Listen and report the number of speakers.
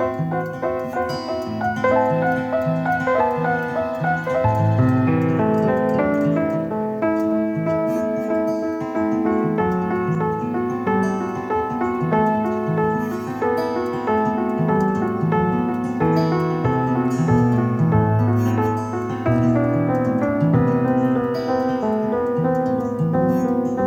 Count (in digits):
0